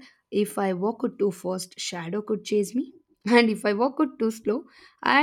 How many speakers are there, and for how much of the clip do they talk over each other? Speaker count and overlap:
one, no overlap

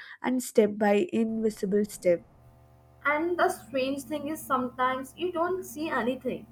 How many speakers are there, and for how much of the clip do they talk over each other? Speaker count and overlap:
two, no overlap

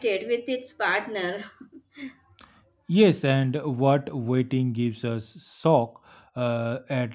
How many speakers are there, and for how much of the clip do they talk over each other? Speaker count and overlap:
two, no overlap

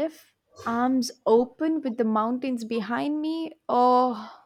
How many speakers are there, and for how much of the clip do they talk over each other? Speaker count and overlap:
one, no overlap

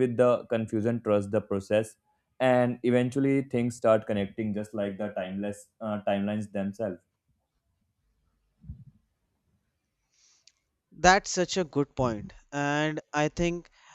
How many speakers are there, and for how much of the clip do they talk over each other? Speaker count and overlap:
two, no overlap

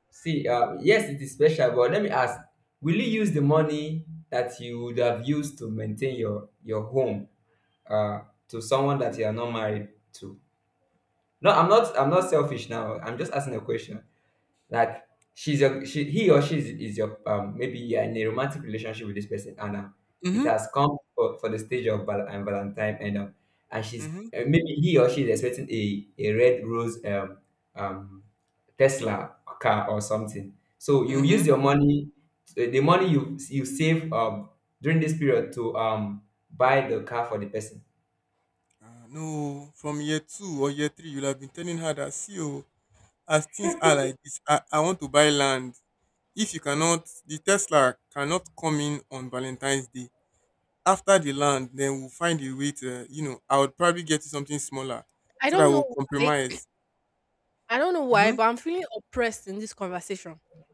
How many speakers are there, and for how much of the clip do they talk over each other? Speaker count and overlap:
three, about 3%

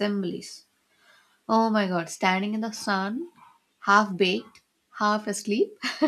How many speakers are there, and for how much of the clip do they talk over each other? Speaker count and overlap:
one, no overlap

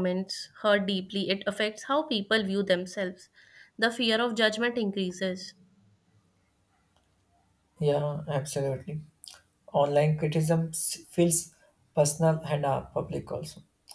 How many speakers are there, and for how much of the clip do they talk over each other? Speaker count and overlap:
two, no overlap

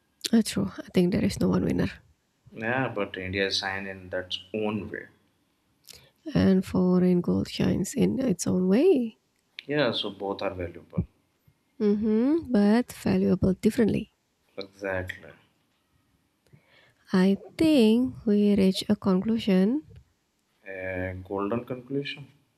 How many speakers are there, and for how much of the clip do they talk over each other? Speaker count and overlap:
two, no overlap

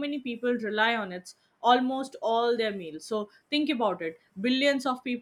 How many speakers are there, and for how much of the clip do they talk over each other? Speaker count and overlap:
one, no overlap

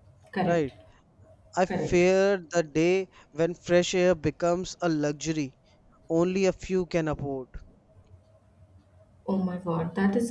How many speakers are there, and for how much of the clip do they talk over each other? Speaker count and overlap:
two, about 6%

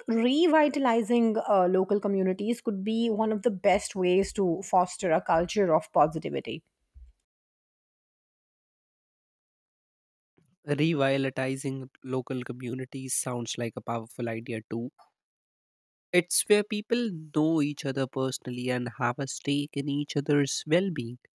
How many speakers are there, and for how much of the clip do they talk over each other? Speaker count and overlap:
two, no overlap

